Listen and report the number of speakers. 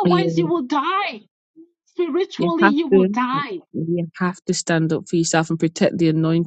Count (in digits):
2